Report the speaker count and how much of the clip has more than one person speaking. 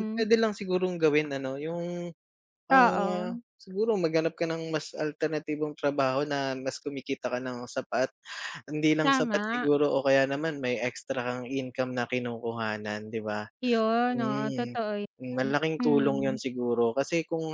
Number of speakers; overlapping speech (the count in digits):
2, about 19%